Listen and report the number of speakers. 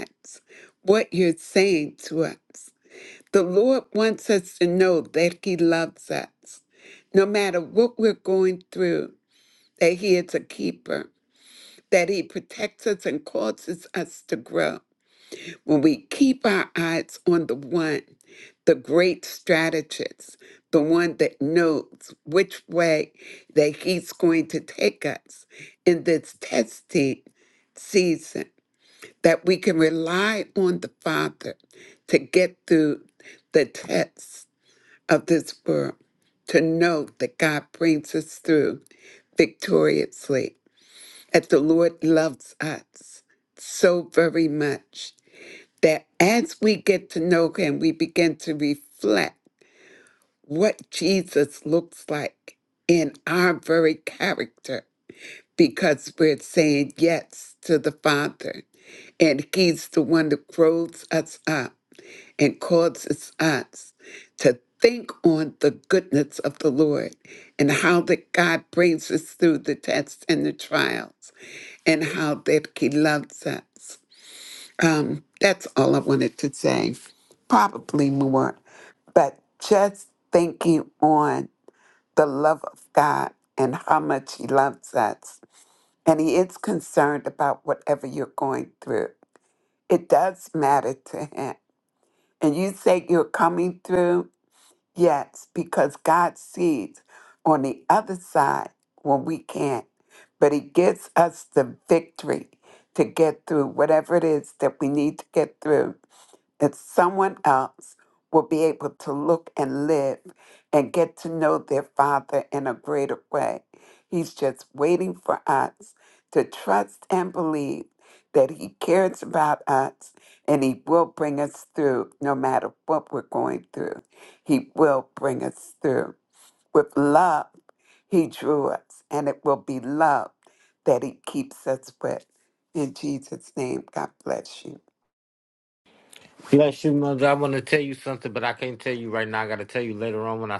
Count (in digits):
2